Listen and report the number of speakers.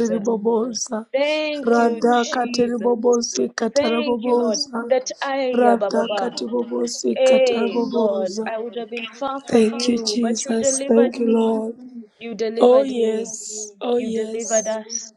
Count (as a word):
two